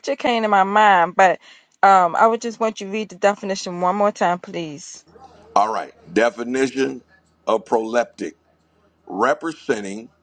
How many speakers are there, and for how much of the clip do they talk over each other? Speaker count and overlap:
2, no overlap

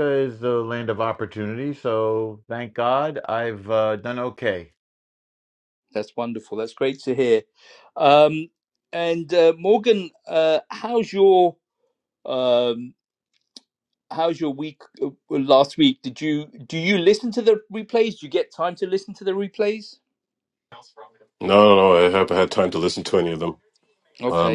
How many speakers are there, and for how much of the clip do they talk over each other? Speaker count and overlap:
3, about 1%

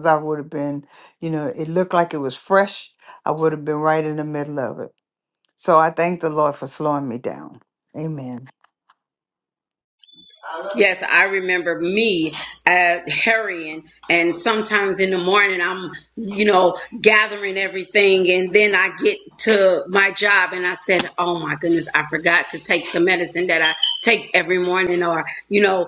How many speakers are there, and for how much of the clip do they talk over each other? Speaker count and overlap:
2, no overlap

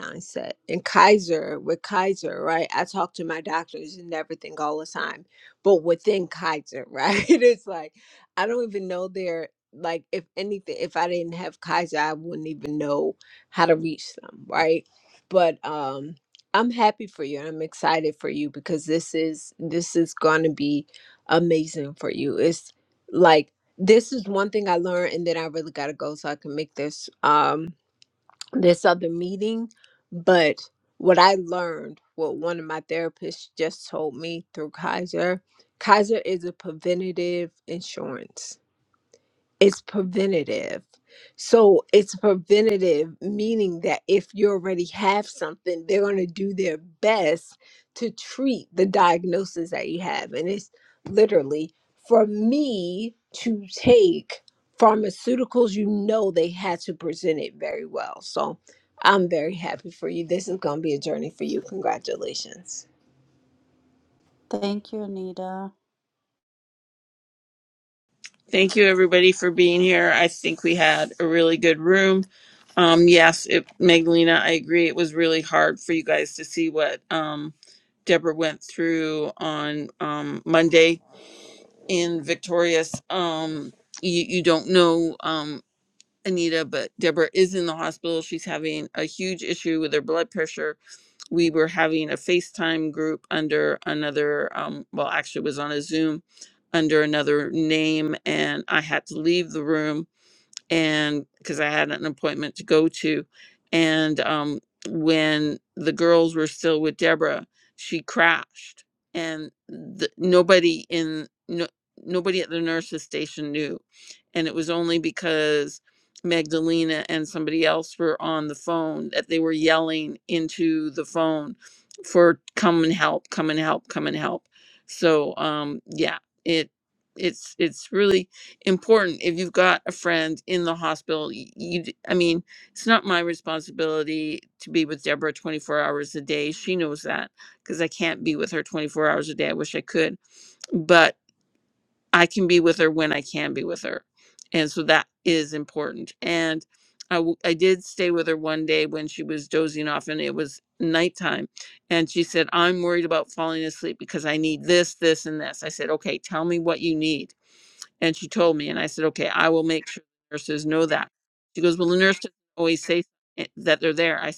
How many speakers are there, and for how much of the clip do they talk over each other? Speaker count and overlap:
3, no overlap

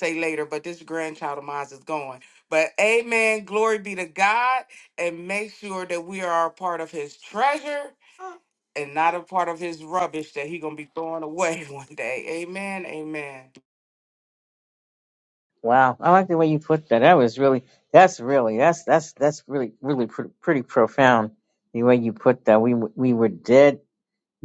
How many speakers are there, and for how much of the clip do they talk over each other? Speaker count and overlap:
2, no overlap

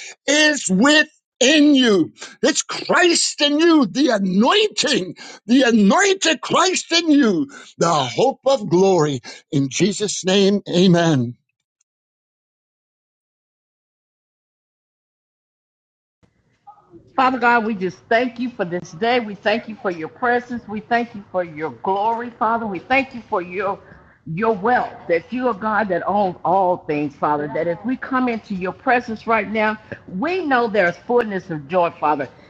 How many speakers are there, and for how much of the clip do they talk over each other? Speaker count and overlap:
2, no overlap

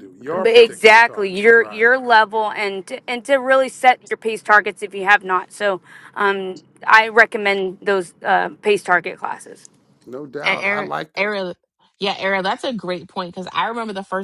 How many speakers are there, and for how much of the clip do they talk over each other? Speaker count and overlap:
3, about 17%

